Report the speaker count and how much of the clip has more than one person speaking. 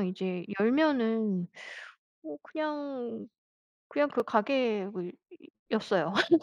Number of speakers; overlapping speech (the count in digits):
1, no overlap